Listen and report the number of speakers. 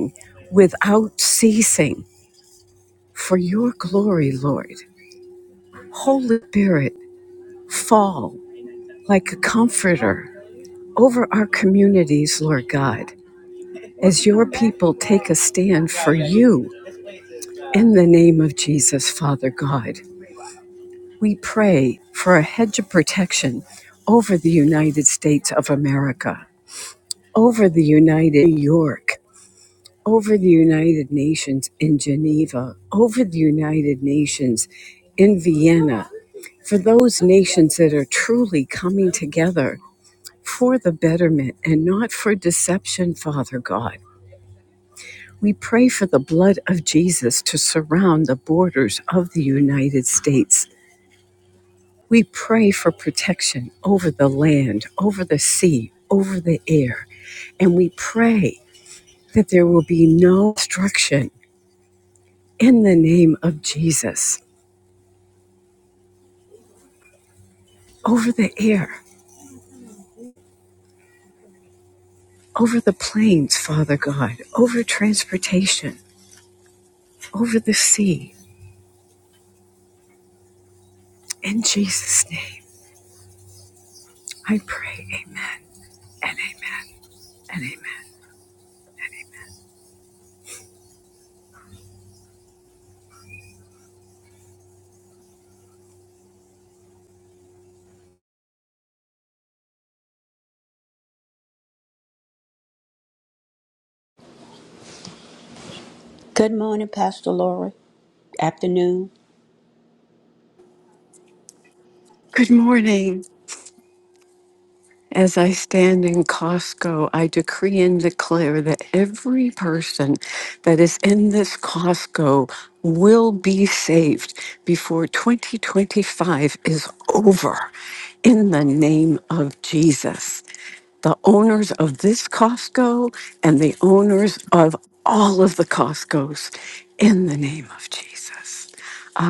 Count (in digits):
2